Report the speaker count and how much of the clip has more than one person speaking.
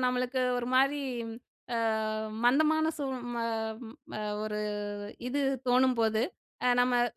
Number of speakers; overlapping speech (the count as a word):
one, no overlap